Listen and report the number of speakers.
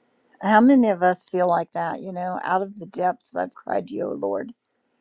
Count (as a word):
one